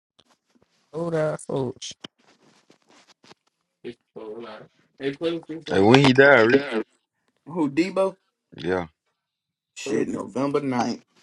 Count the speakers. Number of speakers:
three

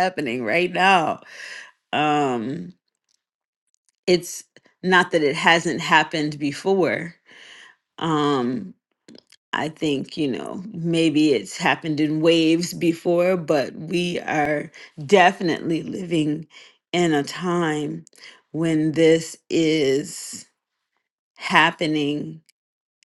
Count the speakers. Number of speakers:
one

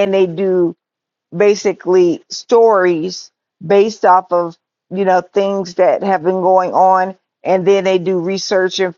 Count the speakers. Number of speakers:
one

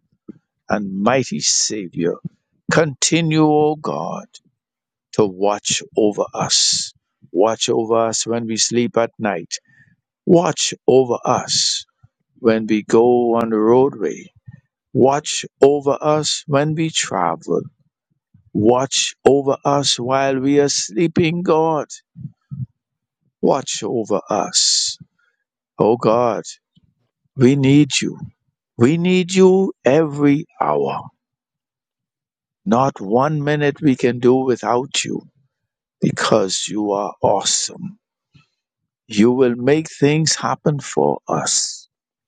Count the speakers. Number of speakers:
one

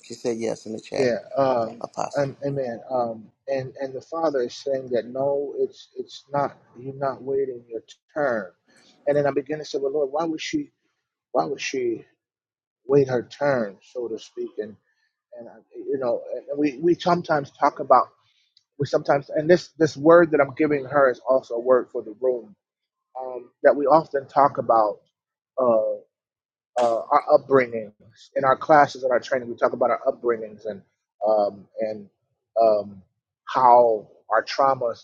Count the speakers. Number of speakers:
two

